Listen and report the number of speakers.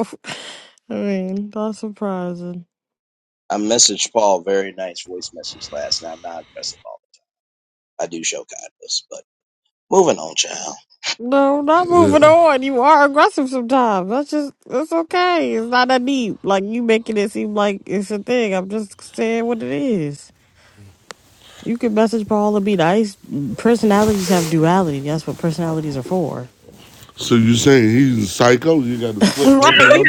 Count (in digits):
3